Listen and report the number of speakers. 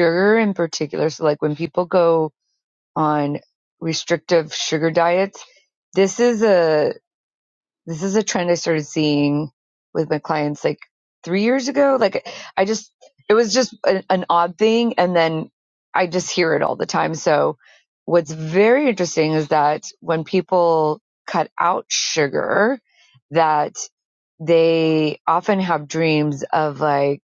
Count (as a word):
one